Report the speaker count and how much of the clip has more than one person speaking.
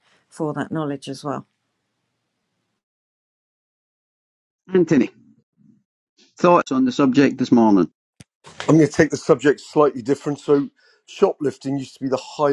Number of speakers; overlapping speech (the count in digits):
3, no overlap